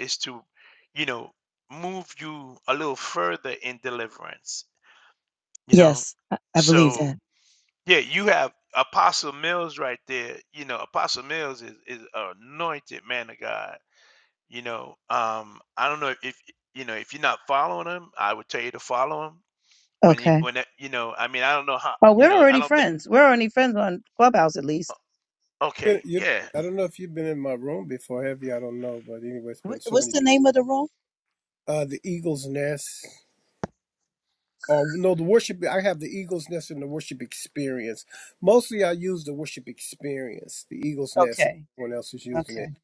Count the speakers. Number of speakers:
3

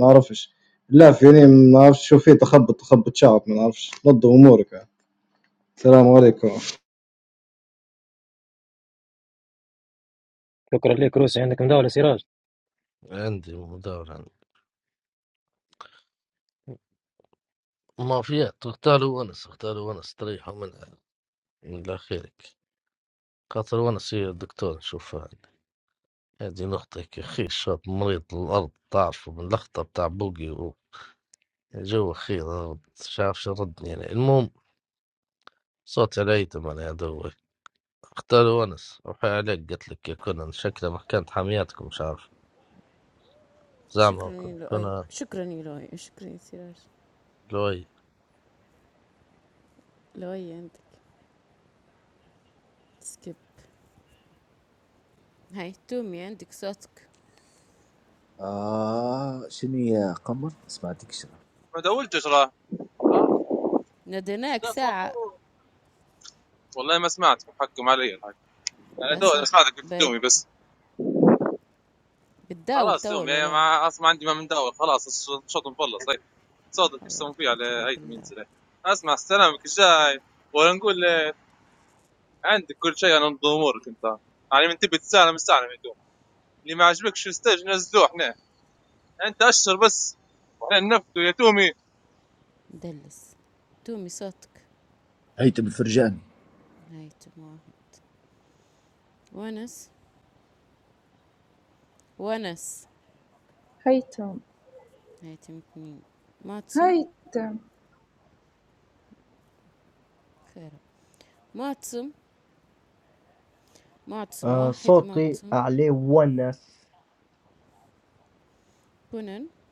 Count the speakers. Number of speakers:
8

